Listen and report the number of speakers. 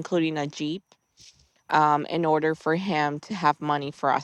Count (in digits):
1